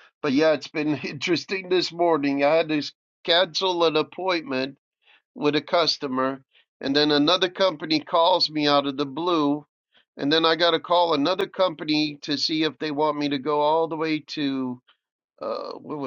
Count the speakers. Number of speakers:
one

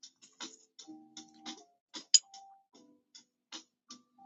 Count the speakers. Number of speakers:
zero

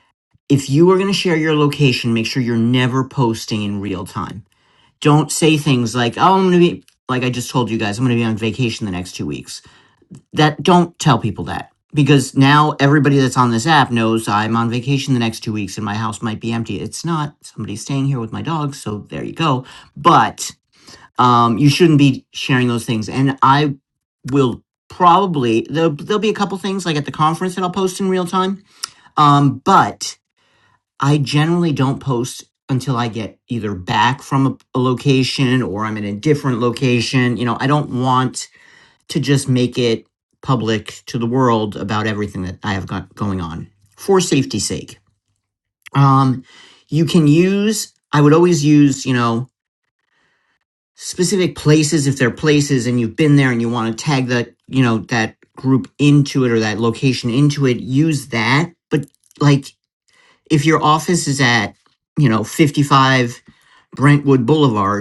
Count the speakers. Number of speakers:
one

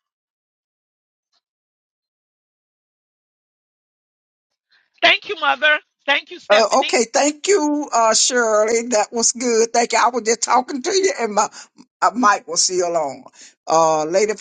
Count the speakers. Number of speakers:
two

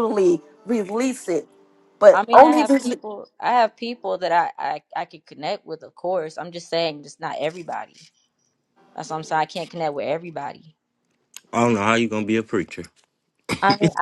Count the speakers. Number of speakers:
three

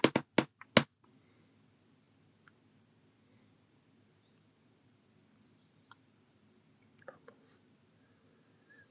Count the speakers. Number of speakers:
zero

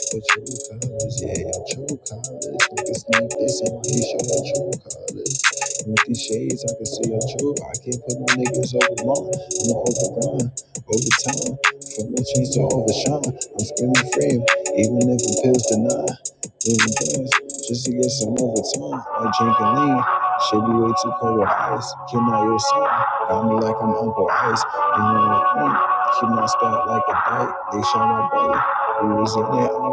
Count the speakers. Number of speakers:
one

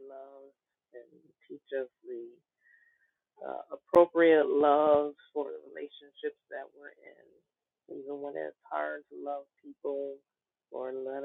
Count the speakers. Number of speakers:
one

